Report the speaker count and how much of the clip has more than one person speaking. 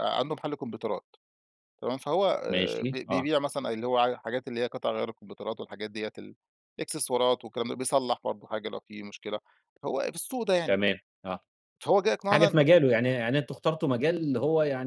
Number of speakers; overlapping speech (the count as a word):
two, about 8%